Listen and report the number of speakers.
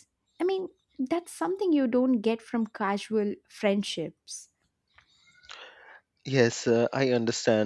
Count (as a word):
two